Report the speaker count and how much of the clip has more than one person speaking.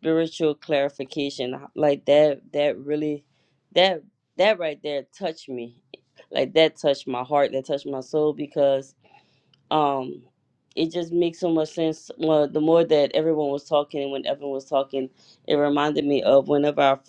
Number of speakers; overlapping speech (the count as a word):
one, no overlap